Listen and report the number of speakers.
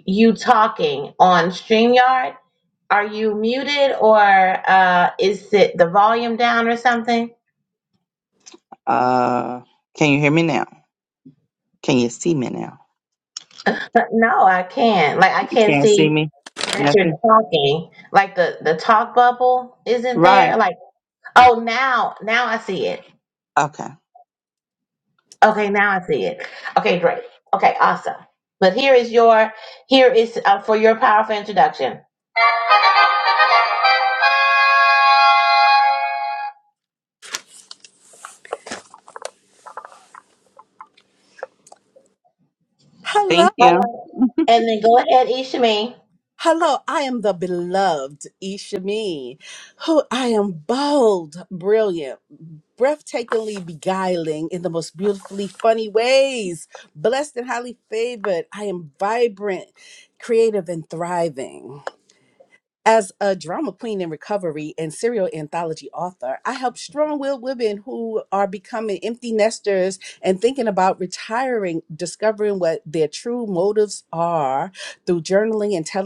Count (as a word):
three